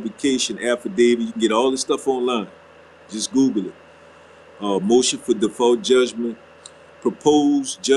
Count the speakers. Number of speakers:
one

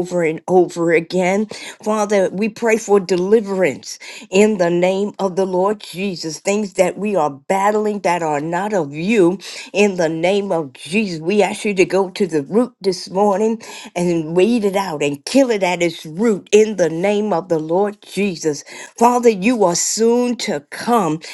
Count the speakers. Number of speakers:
one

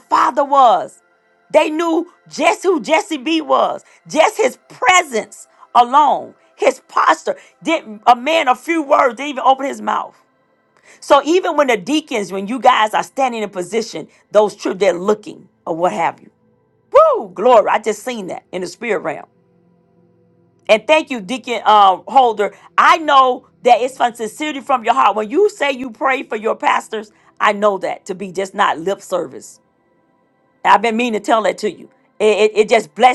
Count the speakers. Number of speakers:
one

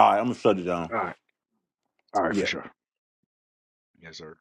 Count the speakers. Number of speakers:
two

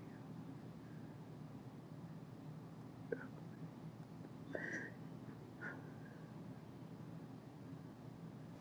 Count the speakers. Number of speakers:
zero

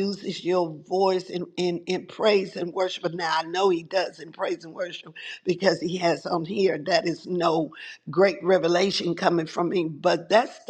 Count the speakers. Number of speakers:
one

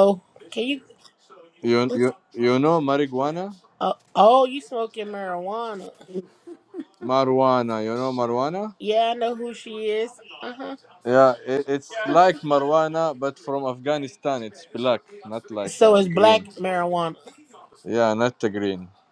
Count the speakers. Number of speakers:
two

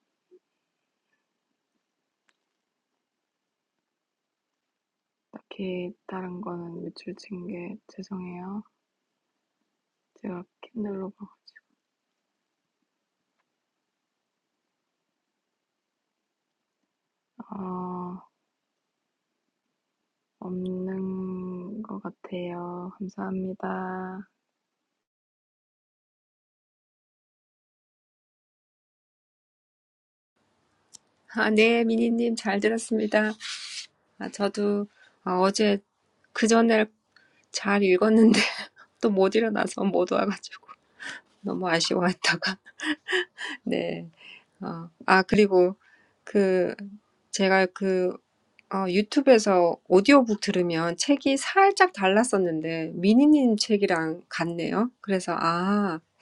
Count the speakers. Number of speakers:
two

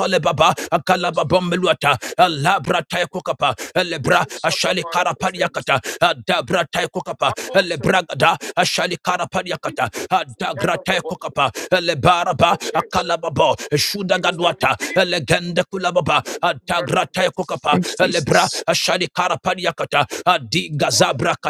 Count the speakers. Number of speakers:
one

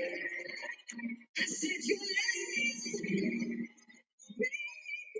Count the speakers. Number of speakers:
zero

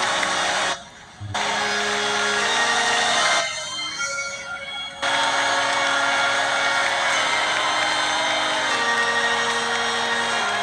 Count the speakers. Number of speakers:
zero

